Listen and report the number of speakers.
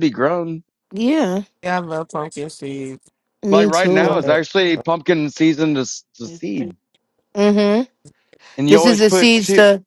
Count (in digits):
3